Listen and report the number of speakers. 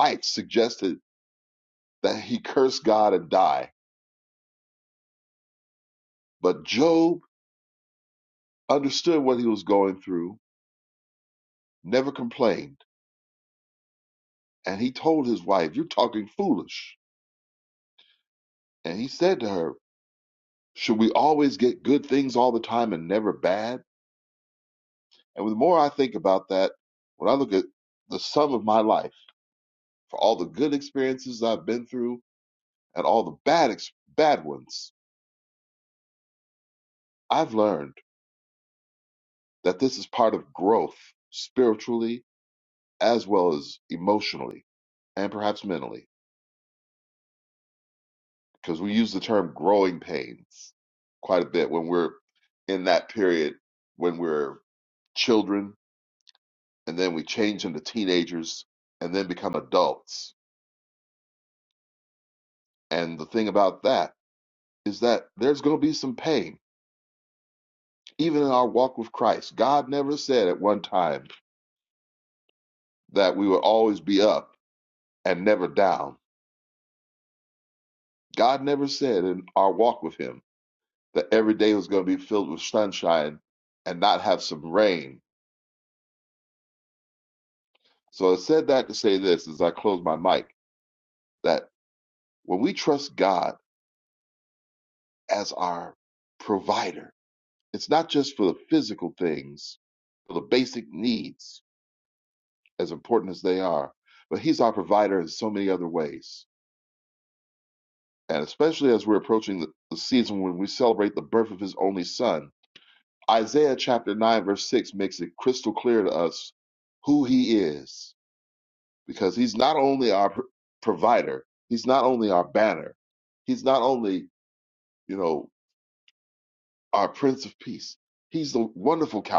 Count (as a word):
one